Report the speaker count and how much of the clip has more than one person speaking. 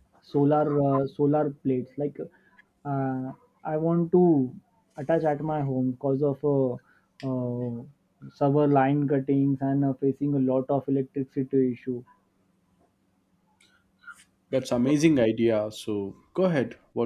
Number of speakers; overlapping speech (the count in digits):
2, no overlap